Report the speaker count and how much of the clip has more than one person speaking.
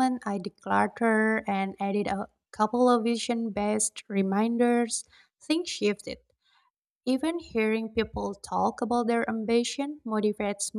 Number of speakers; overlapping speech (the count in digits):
1, no overlap